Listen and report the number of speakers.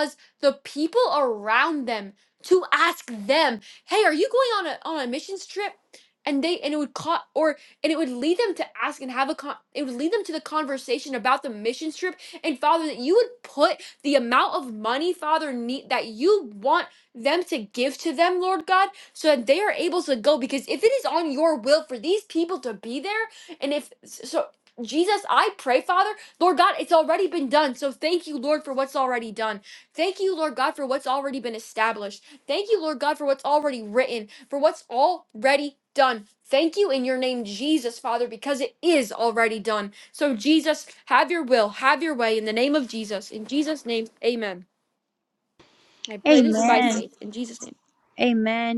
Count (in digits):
2